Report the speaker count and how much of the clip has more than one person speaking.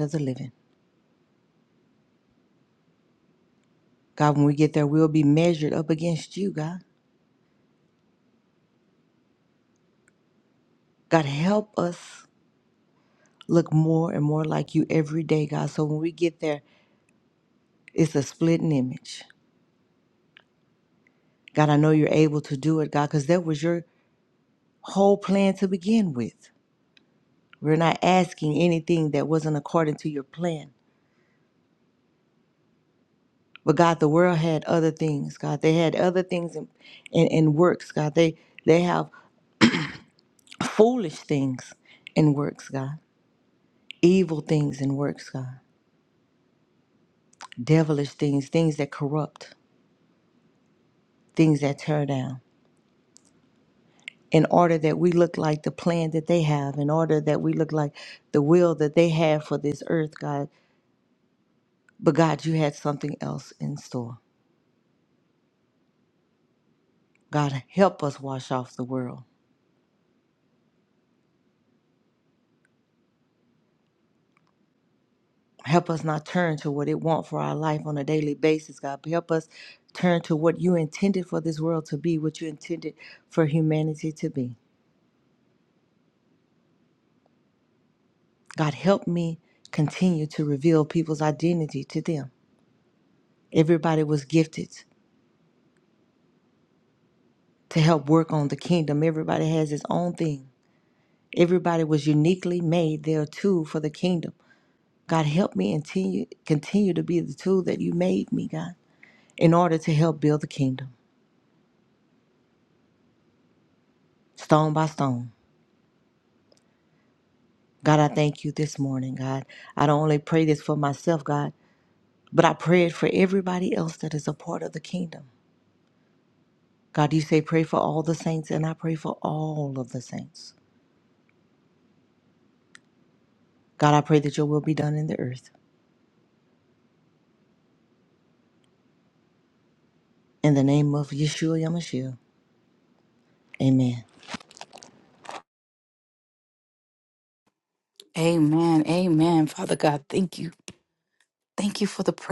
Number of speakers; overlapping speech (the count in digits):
2, no overlap